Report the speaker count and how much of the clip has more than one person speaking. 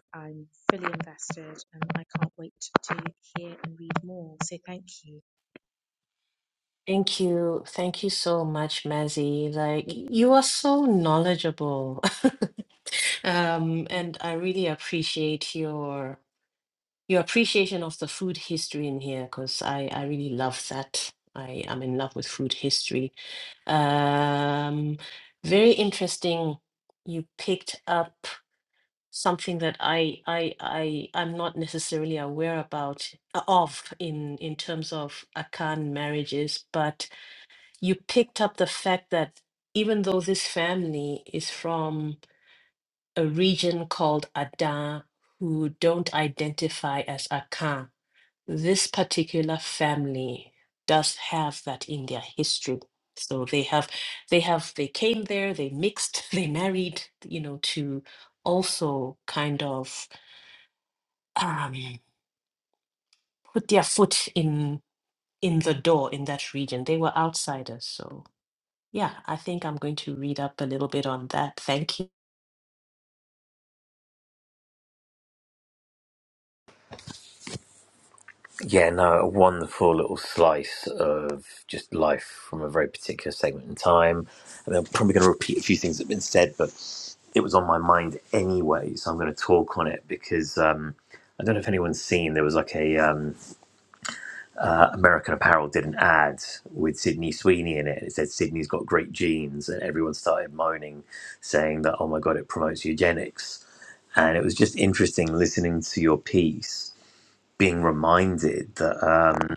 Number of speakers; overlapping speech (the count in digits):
3, no overlap